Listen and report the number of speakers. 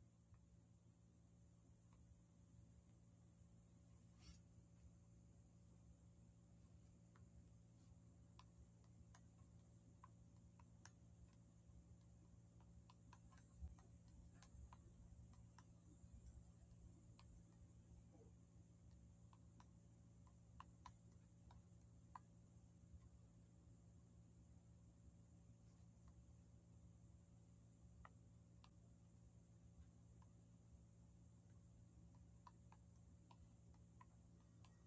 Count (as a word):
zero